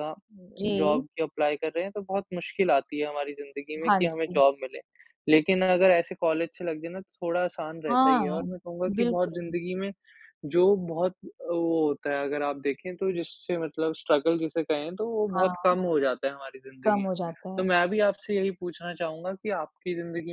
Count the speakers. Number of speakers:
2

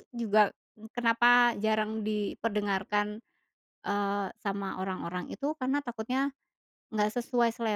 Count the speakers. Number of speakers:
1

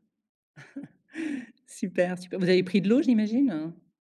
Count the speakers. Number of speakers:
1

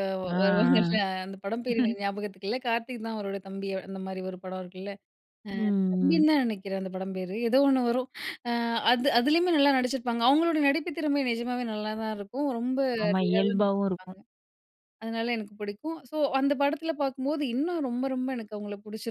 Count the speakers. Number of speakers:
2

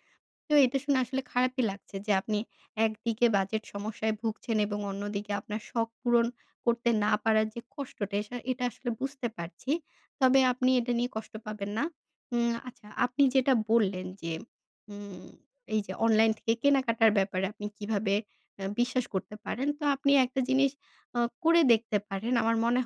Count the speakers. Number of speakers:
1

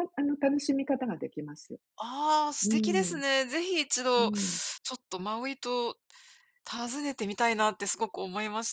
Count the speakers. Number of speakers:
2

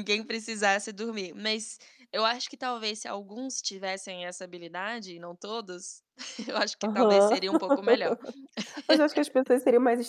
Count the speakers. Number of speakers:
2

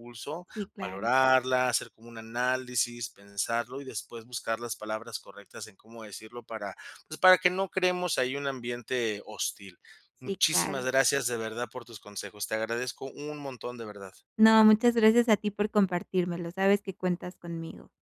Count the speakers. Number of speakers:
2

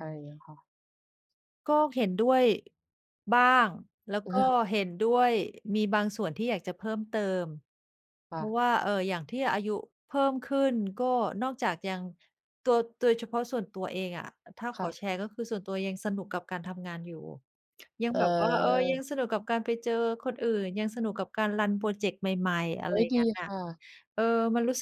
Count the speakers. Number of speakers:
2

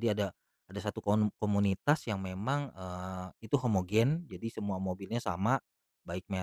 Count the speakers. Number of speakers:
1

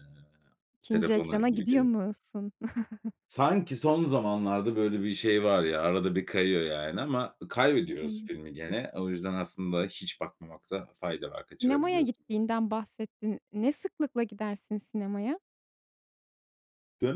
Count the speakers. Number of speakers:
2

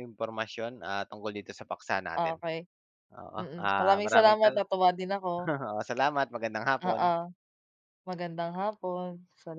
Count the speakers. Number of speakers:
2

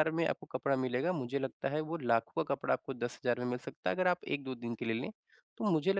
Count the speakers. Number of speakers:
1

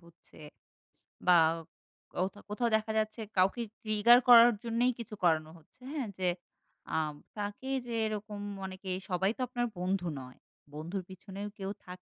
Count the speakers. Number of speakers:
1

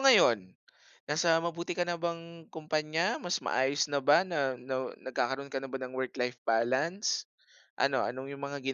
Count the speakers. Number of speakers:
1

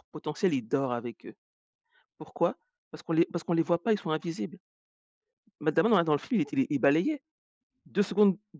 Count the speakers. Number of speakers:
1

